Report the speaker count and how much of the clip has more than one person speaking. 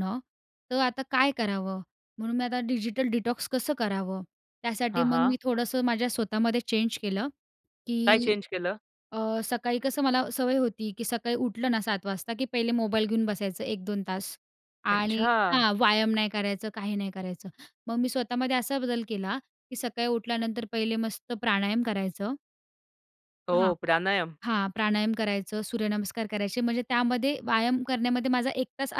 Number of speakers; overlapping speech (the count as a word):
two, about 6%